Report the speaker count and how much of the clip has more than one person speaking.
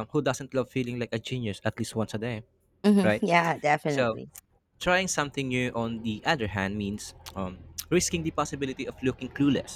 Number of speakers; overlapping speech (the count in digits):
2, about 4%